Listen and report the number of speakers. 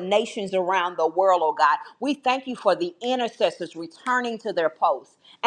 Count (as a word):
one